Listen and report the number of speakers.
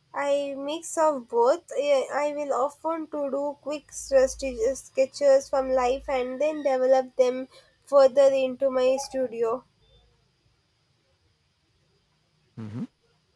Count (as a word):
one